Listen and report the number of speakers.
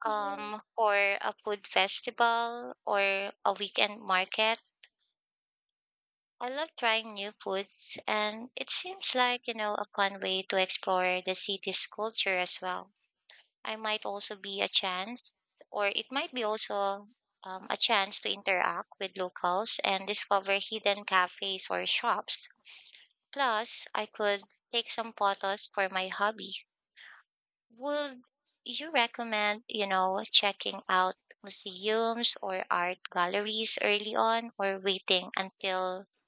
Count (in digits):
1